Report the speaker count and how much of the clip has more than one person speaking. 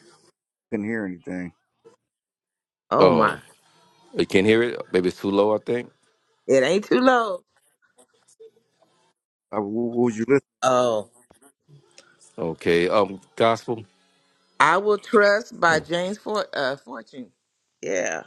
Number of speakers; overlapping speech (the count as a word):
three, about 2%